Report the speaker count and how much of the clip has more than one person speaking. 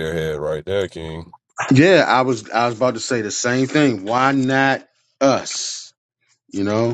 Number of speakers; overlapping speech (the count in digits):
2, no overlap